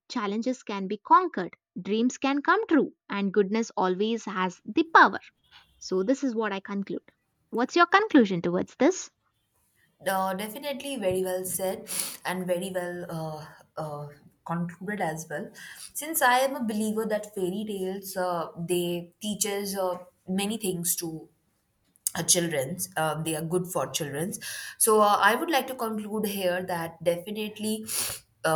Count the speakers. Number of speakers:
two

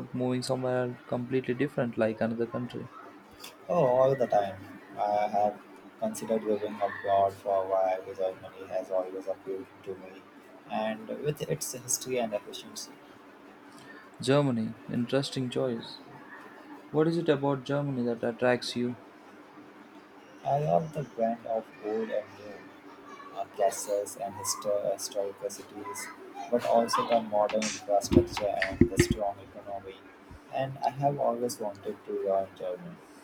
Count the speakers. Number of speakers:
two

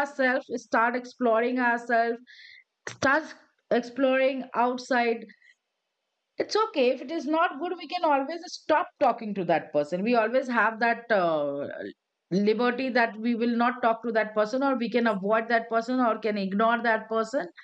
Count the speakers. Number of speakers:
one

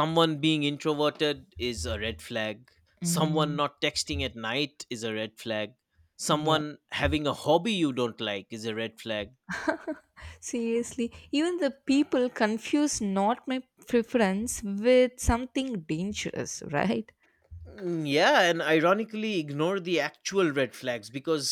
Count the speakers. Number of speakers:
two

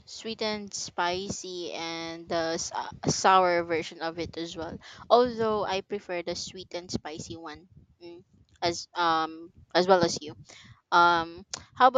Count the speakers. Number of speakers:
one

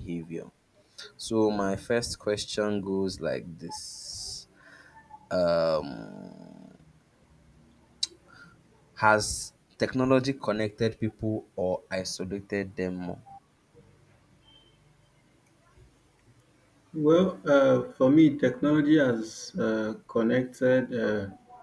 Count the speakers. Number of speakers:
two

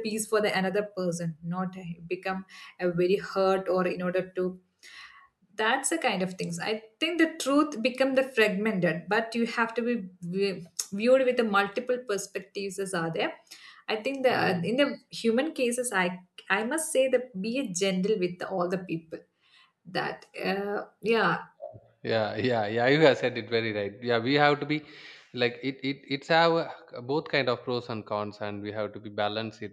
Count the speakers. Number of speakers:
two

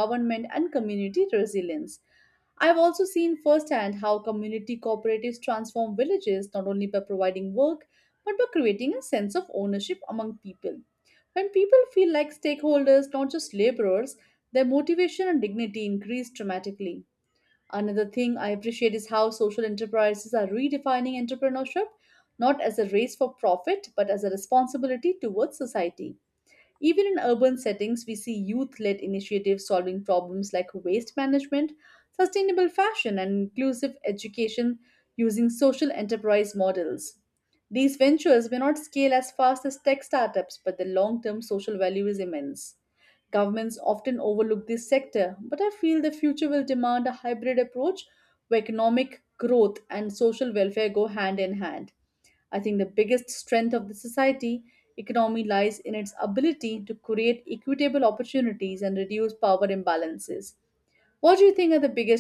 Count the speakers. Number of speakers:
one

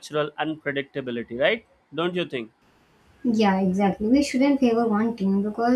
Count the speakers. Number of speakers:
two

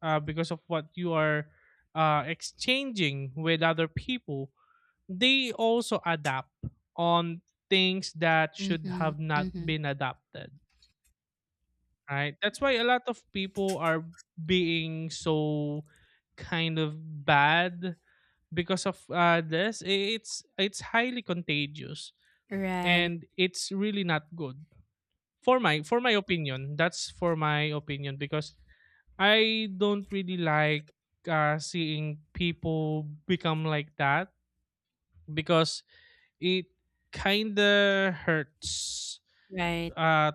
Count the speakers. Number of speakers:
two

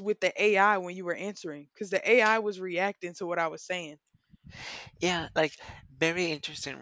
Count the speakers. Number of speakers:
two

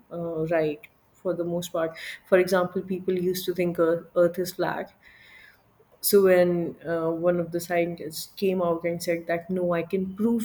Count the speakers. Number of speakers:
one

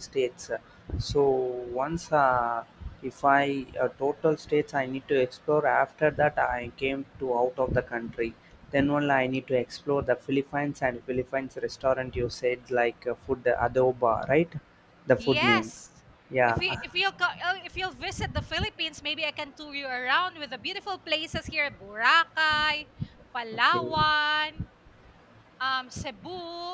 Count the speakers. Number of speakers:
two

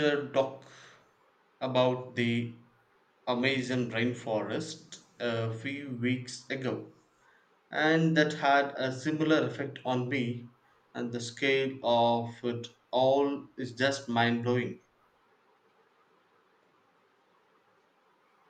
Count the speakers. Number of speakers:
one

